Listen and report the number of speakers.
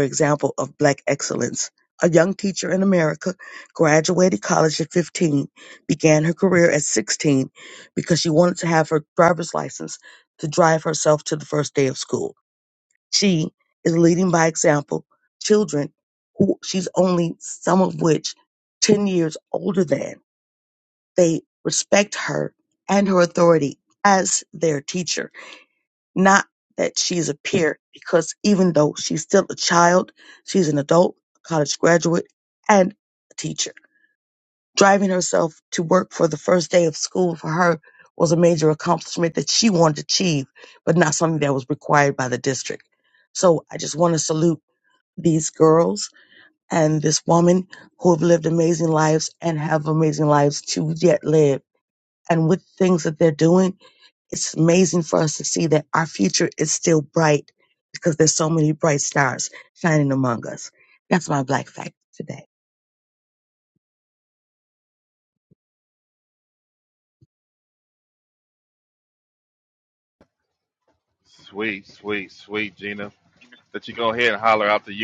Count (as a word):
two